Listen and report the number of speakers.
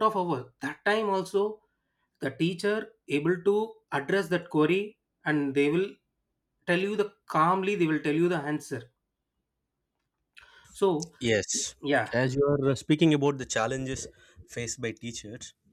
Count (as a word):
two